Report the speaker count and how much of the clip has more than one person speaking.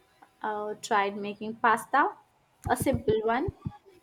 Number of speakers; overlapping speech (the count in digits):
1, no overlap